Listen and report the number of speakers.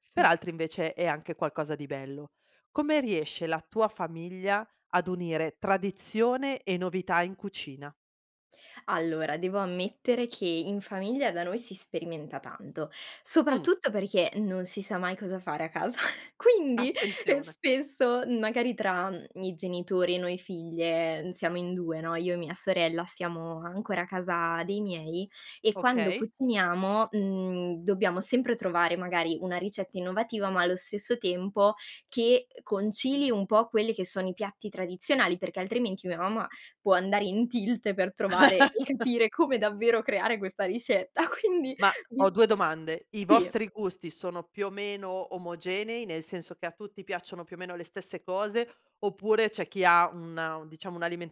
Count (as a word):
two